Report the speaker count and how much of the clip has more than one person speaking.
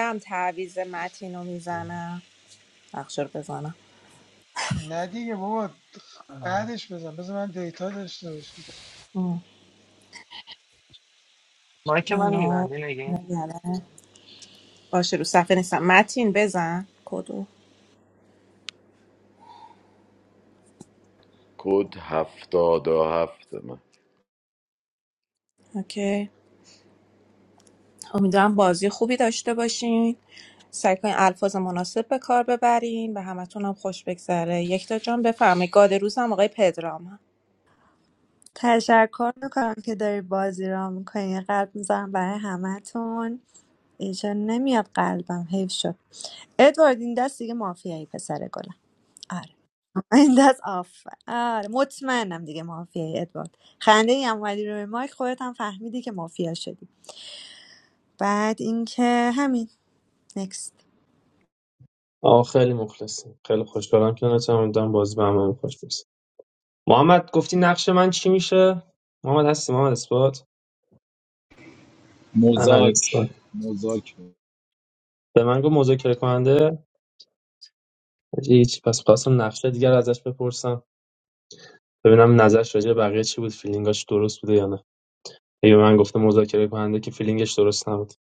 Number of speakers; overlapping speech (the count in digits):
7, about 2%